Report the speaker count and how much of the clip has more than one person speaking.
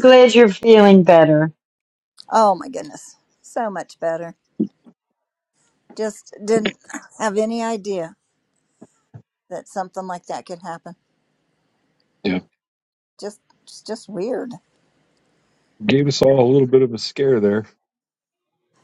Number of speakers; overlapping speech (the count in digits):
3, no overlap